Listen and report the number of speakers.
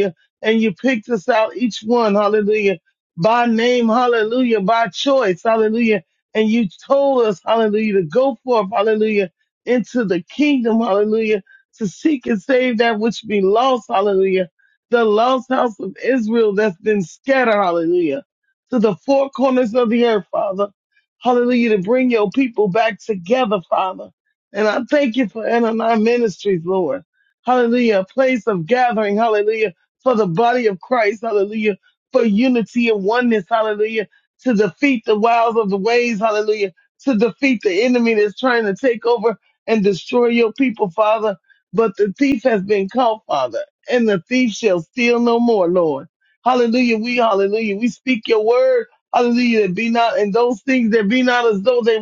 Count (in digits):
1